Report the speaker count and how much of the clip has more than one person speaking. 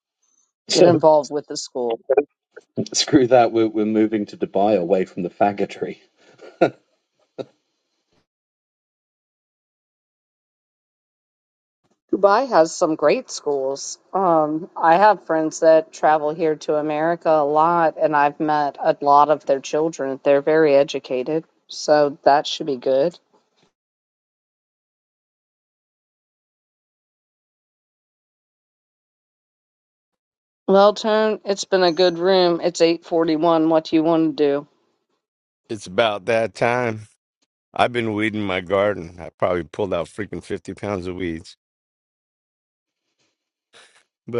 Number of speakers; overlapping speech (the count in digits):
3, about 1%